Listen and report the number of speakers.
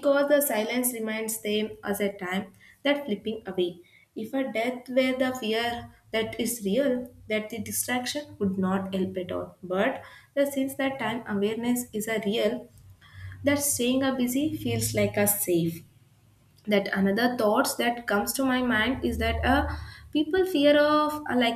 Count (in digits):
1